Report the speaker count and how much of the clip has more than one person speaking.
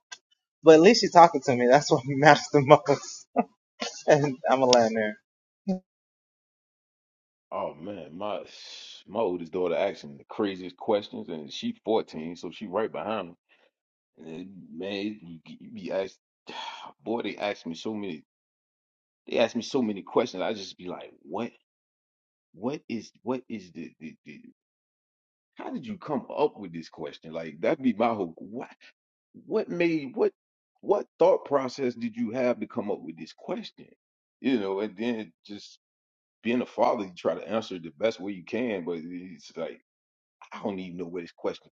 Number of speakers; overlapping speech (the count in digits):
2, no overlap